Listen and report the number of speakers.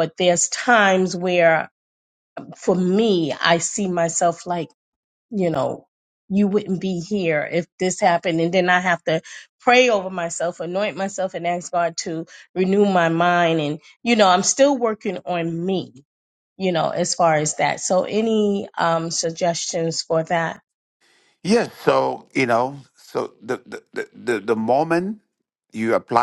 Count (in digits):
2